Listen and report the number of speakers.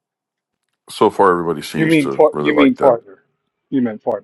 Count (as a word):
two